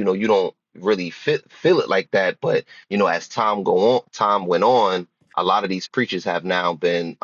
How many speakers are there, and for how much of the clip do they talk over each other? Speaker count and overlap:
1, no overlap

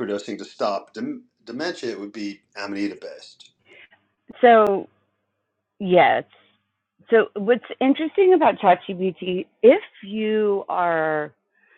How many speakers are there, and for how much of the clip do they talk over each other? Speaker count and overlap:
2, no overlap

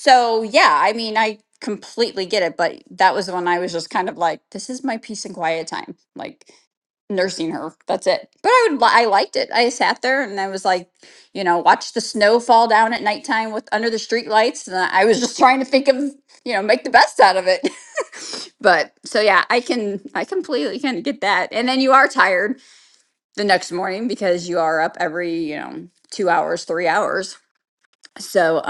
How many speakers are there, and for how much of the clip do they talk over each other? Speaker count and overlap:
1, no overlap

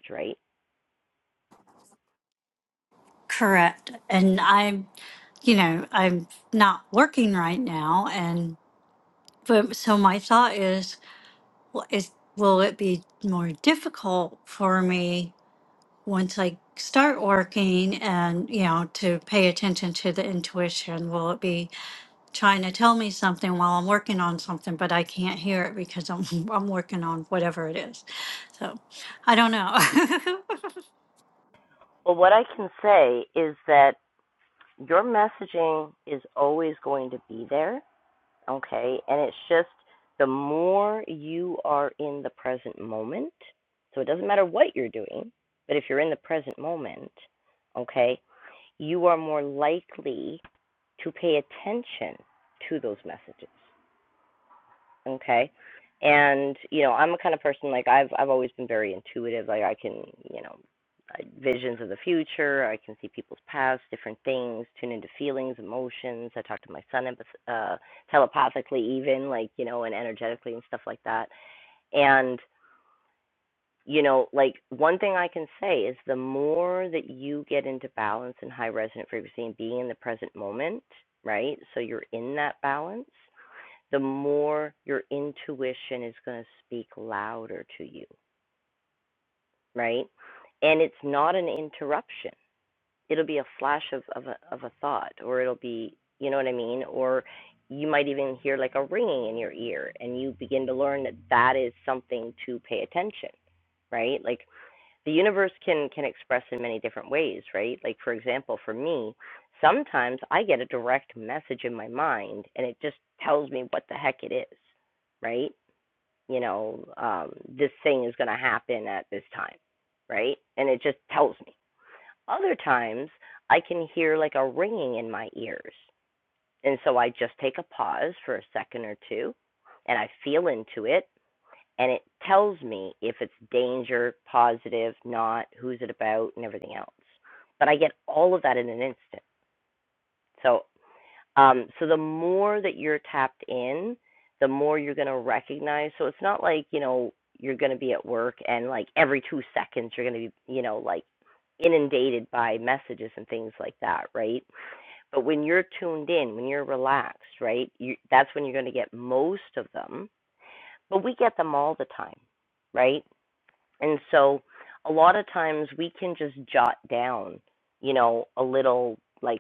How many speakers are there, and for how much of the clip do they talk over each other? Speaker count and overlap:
2, no overlap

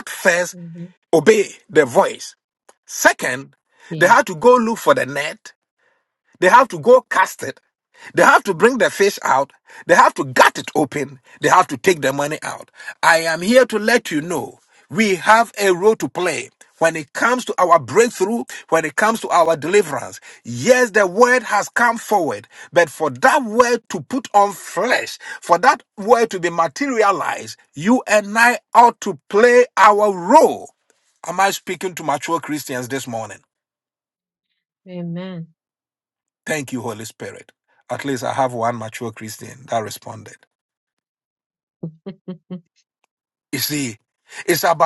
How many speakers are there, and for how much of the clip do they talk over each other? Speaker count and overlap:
2, about 1%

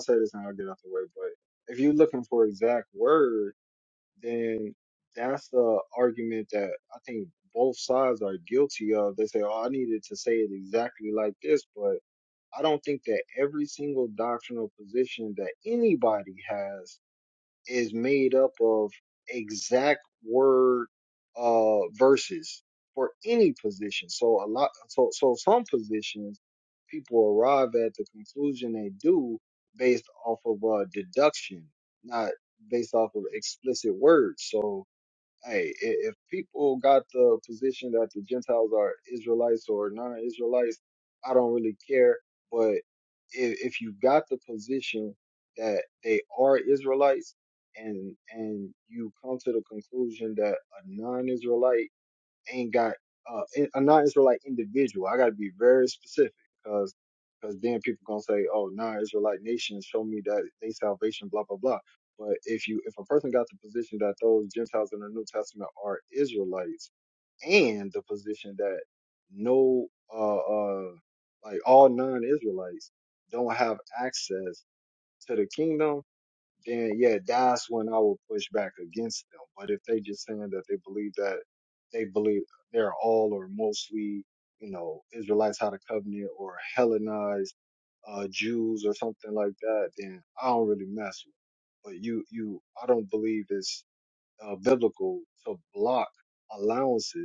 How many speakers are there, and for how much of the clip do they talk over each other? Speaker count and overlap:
1, no overlap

